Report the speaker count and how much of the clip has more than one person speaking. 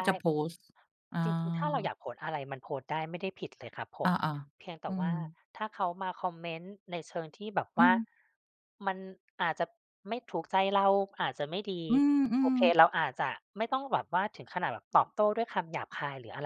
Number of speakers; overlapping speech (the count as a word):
two, about 8%